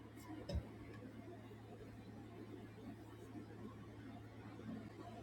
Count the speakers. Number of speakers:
zero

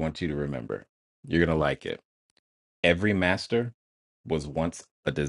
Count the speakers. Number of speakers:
one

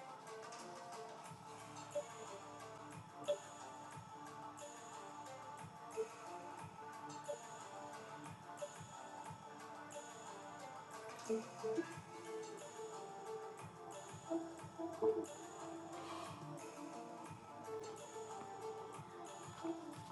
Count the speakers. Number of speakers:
zero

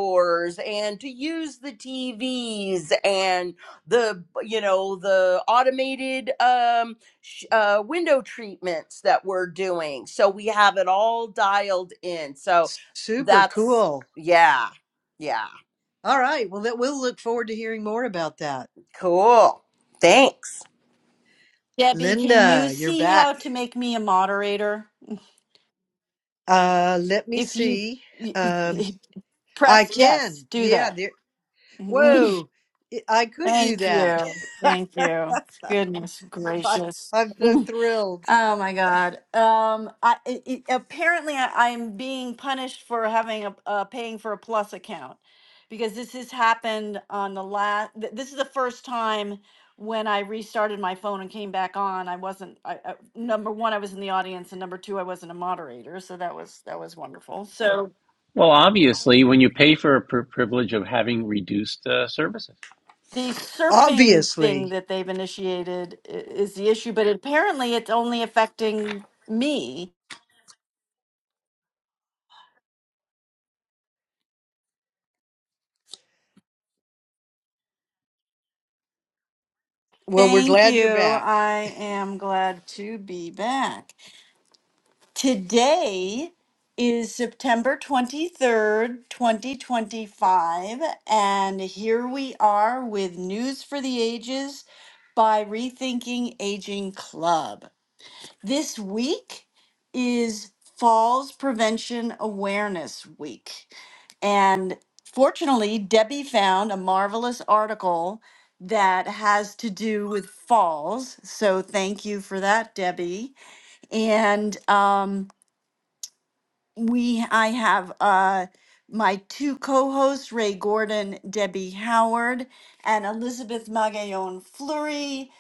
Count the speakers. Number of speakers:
four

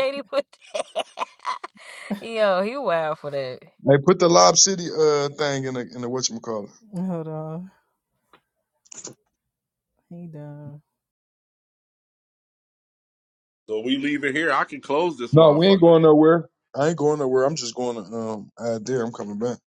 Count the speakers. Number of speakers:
four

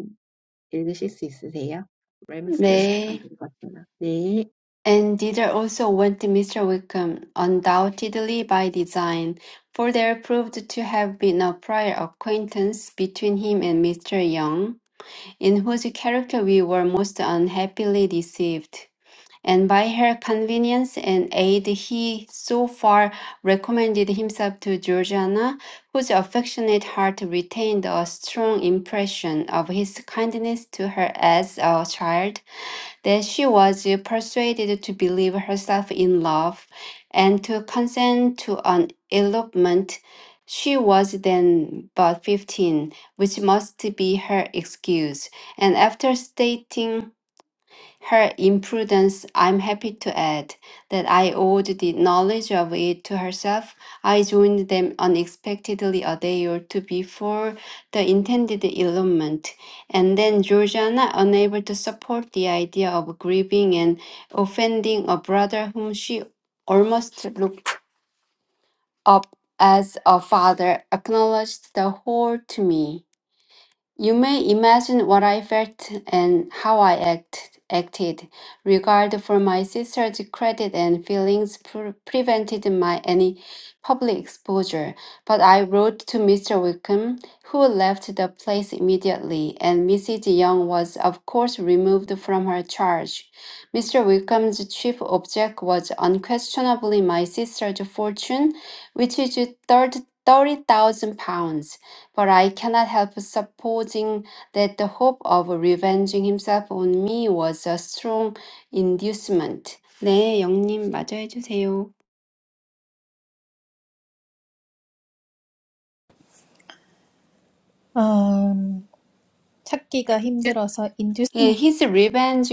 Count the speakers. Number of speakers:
three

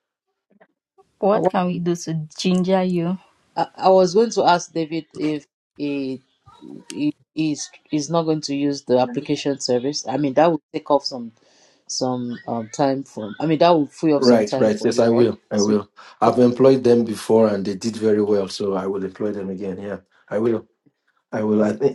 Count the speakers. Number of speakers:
three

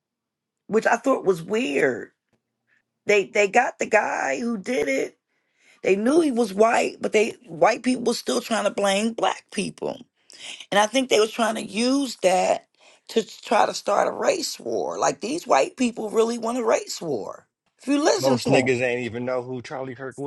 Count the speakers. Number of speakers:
two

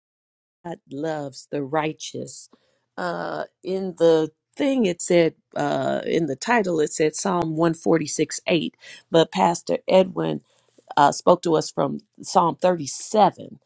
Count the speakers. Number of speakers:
one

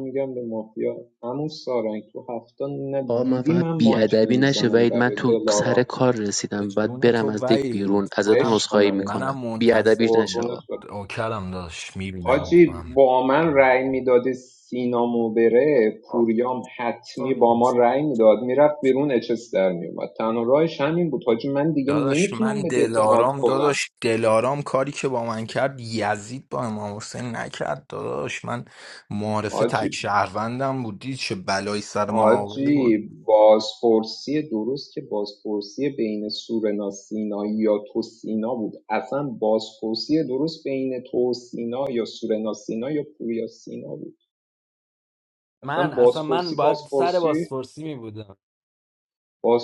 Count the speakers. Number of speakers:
four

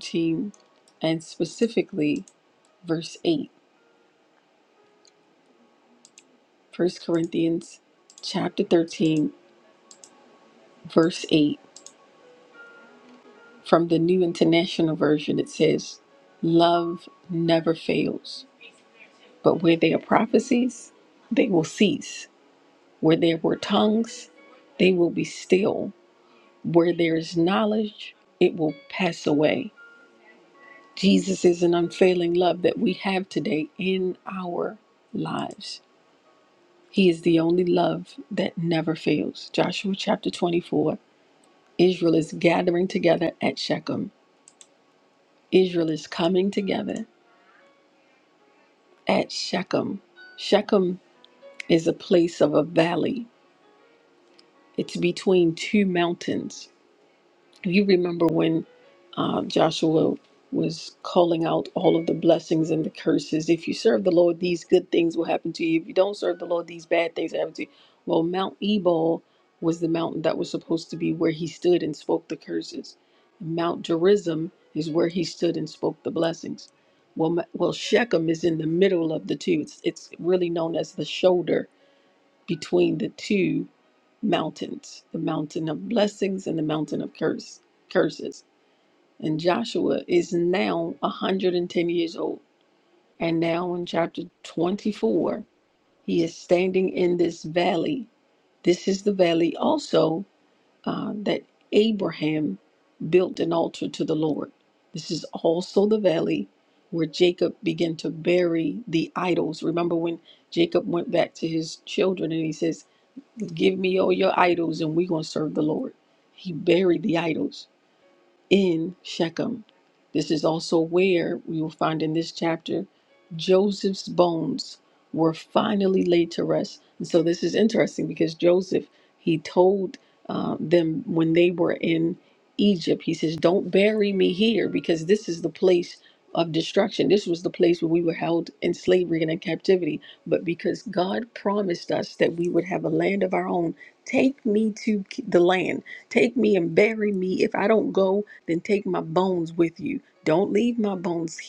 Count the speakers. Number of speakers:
one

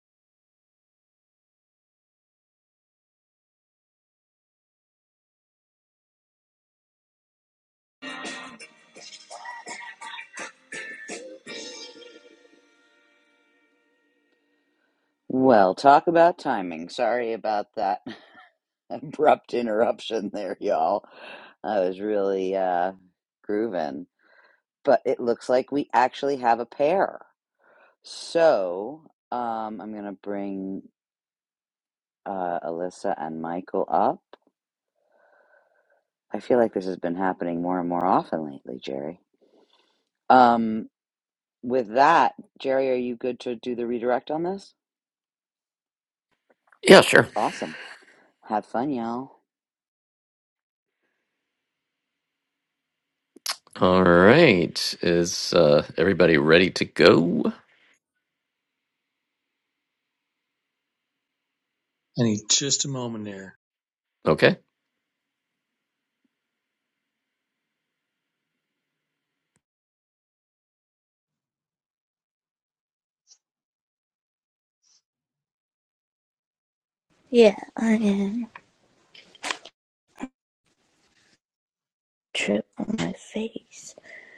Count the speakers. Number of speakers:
four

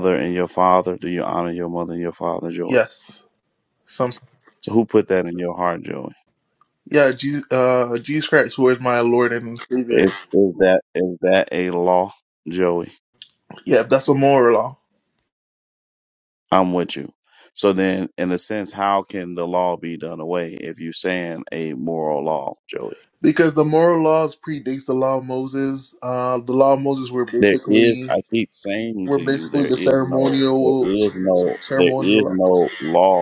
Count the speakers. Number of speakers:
two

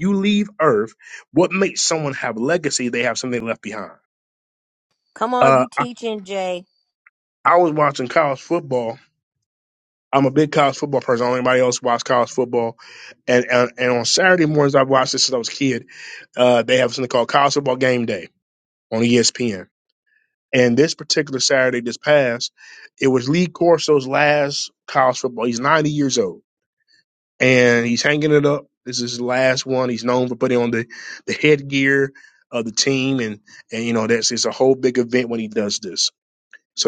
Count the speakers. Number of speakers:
two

